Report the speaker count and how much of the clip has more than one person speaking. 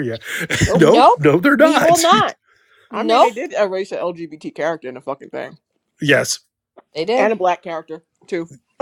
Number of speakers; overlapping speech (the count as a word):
three, about 17%